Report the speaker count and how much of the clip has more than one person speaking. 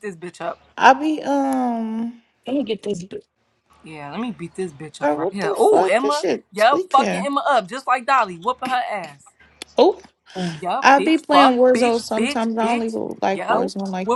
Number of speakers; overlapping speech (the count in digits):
3, about 33%